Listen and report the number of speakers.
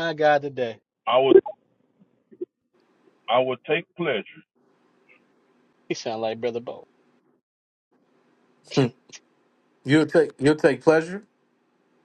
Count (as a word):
three